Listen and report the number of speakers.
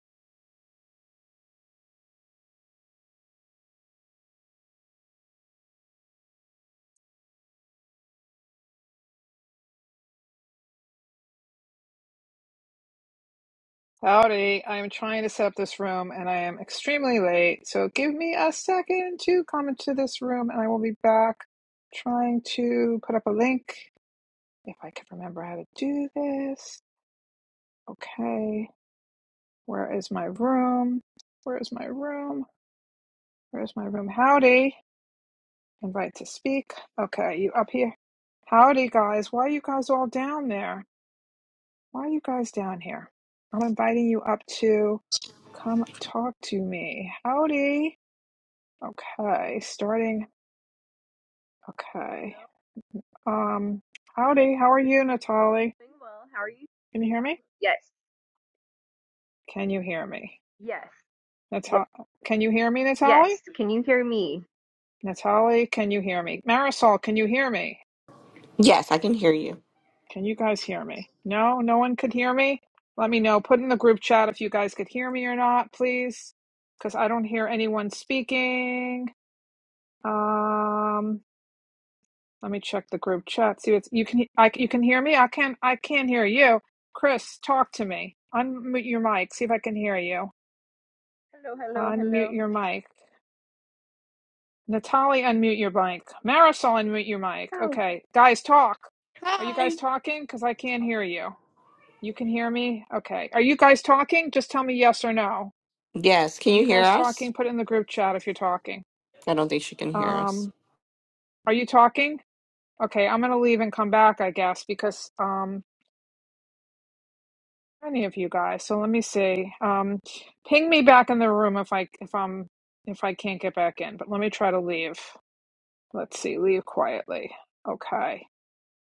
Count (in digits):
3